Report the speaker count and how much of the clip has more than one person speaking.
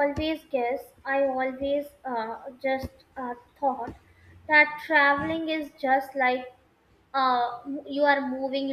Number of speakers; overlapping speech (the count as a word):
one, no overlap